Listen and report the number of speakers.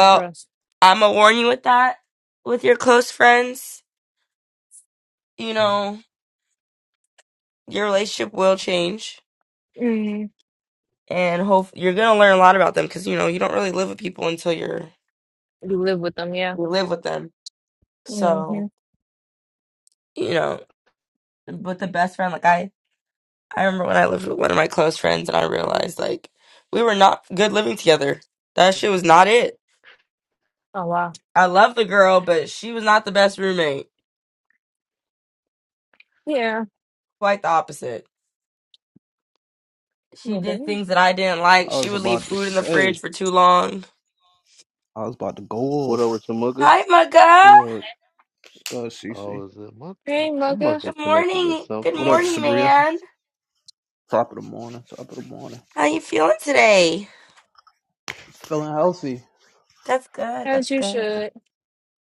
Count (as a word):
four